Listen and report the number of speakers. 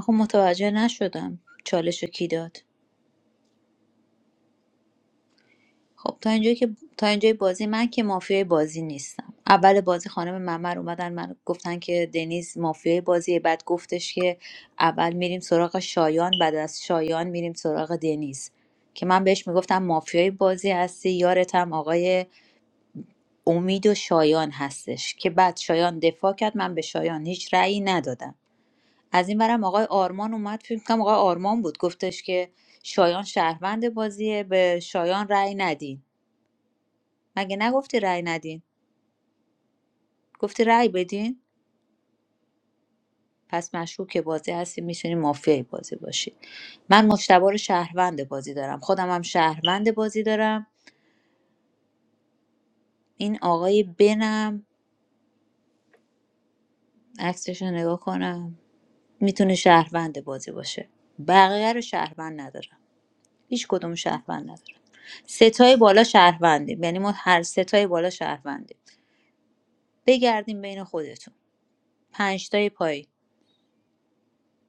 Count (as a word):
one